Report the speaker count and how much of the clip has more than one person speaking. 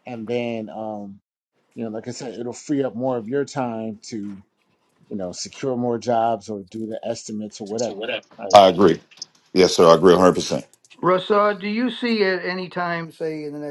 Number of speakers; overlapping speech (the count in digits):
3, about 1%